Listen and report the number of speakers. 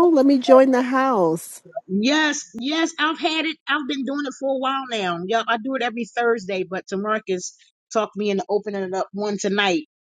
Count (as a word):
two